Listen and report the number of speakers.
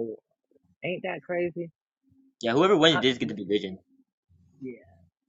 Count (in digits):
2